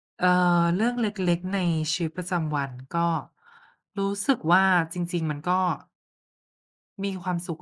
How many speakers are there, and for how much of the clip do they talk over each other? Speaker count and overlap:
1, no overlap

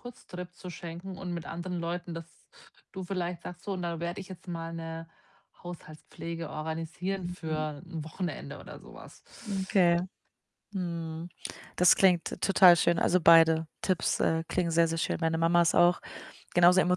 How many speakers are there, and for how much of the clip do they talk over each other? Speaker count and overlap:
2, about 3%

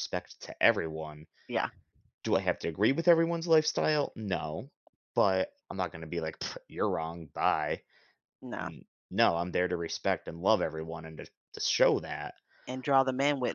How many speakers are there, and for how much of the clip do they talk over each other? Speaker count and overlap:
2, about 1%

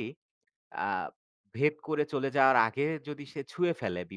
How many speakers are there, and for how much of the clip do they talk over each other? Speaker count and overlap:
1, no overlap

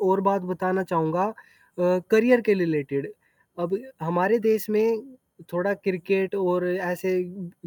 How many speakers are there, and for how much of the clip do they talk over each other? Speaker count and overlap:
1, no overlap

